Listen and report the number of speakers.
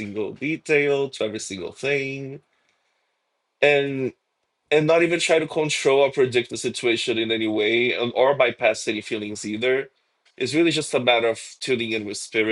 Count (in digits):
1